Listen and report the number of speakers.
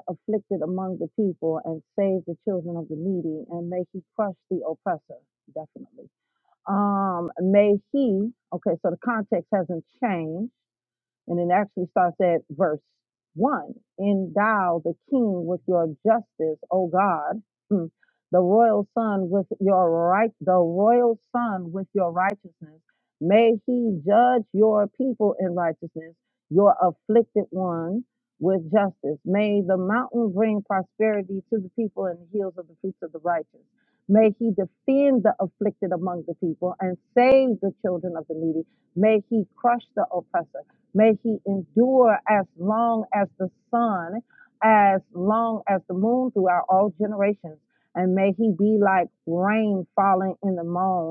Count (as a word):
one